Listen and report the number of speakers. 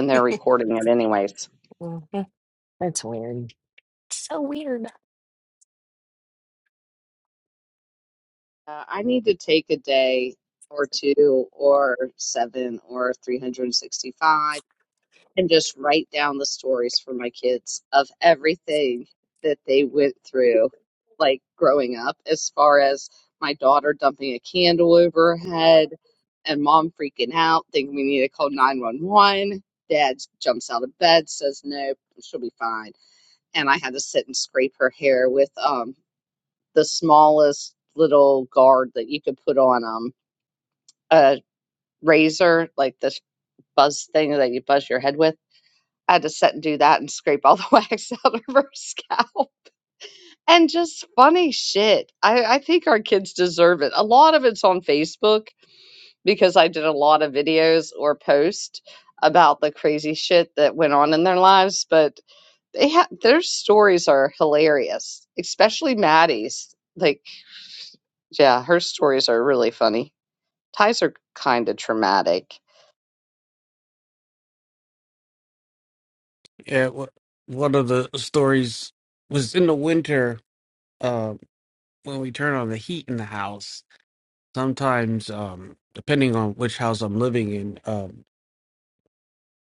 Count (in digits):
3